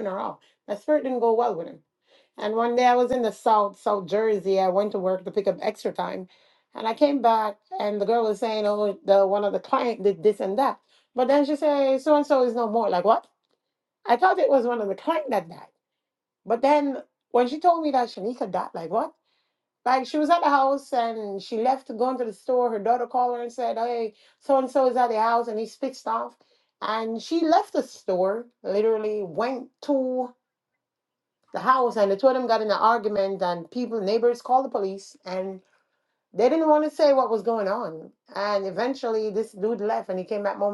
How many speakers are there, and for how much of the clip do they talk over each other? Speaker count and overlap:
1, no overlap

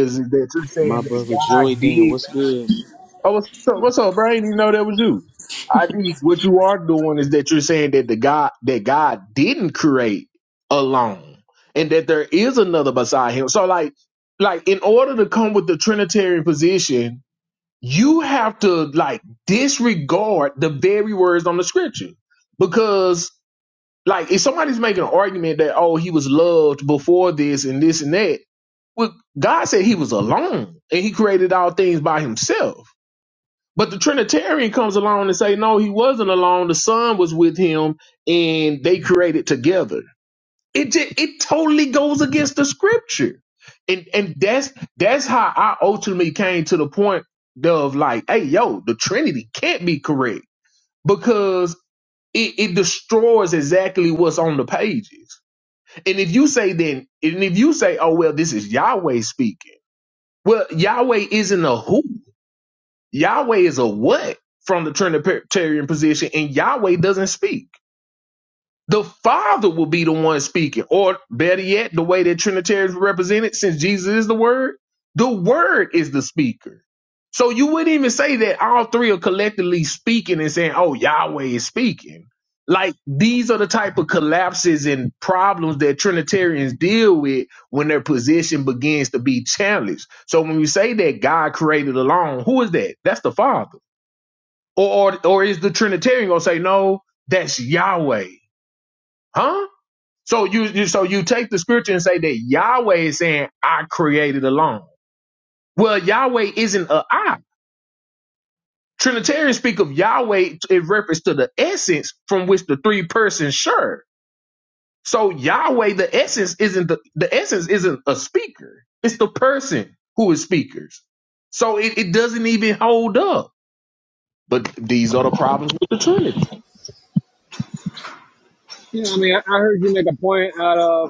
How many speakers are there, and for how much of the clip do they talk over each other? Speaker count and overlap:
3, about 1%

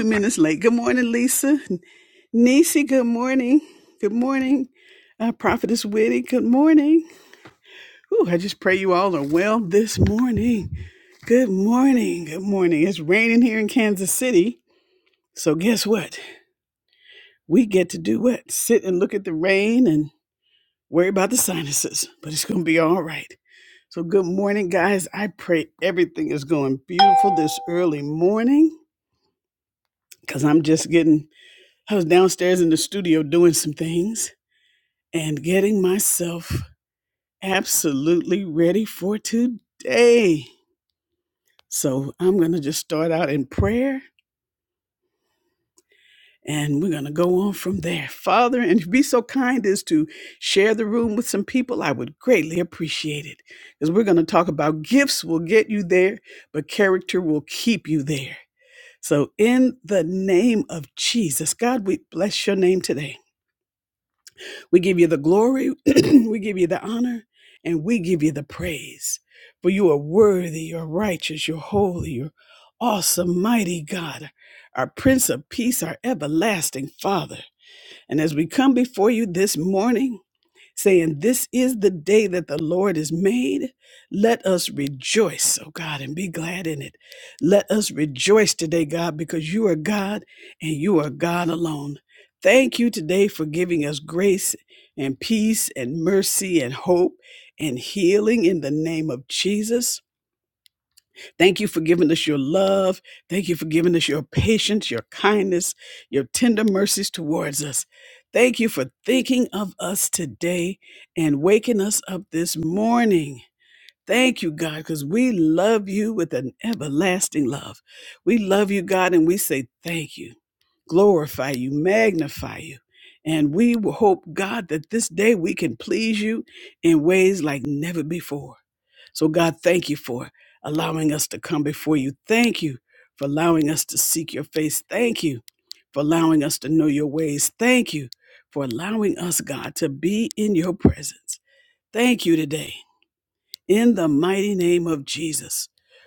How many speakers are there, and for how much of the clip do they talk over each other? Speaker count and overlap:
1, no overlap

